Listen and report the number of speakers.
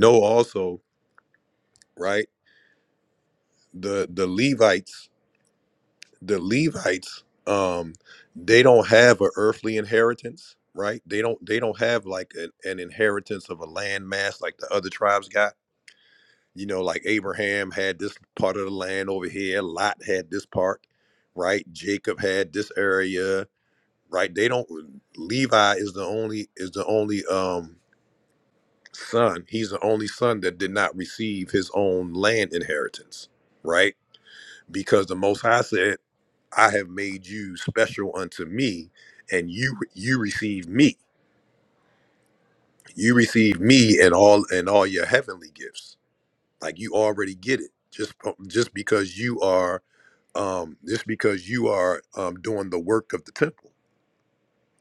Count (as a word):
one